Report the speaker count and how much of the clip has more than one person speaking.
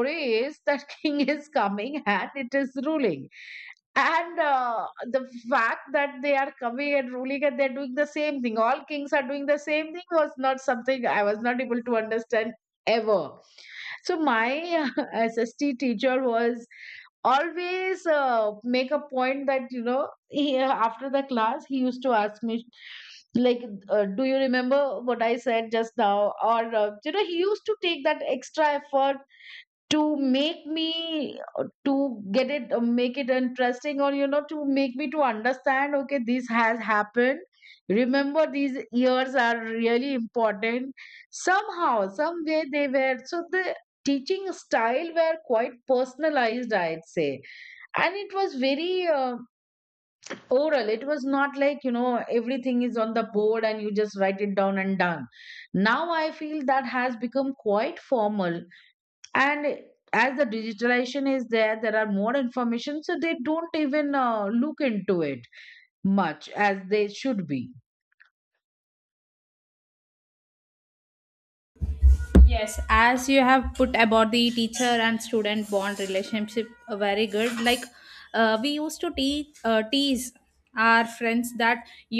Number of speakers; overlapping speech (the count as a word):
two, no overlap